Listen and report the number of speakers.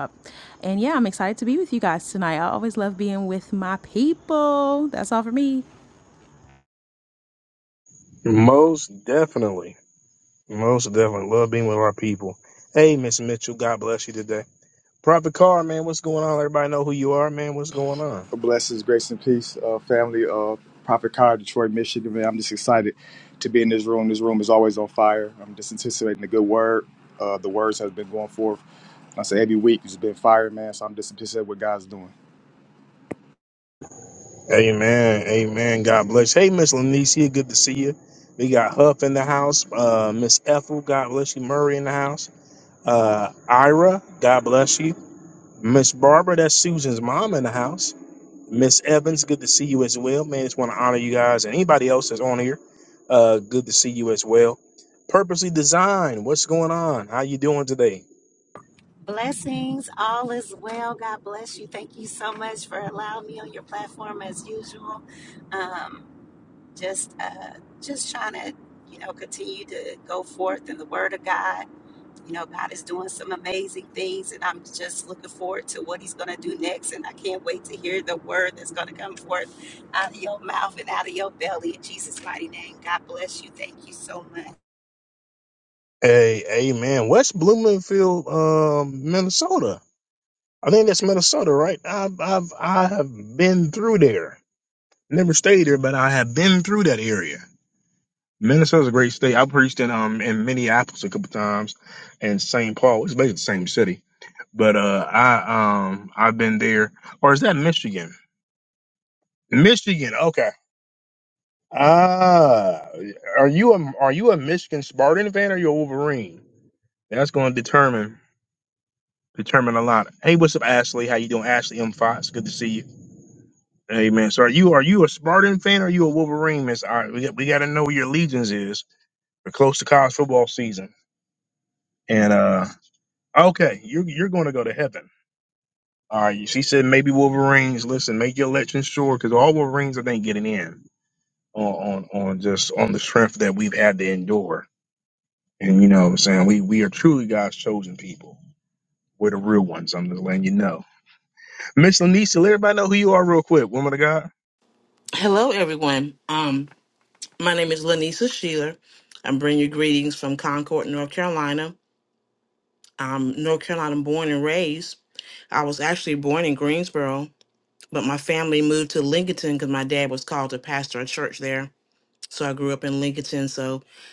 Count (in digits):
5